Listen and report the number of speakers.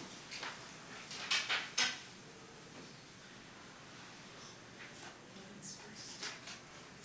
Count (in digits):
0